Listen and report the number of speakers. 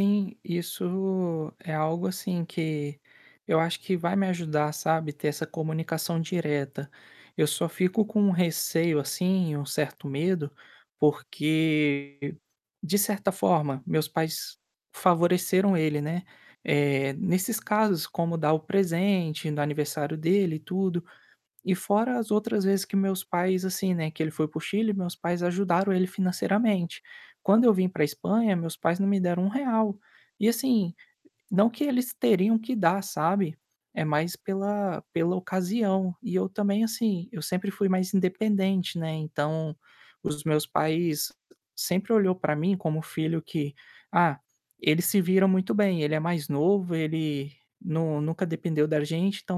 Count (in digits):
1